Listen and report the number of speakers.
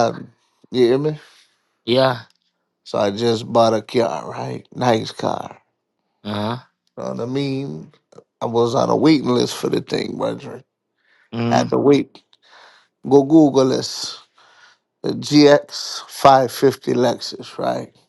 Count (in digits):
2